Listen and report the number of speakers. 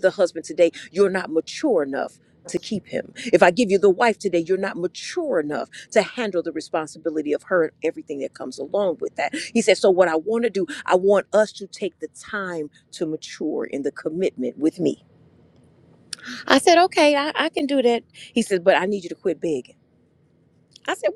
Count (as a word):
one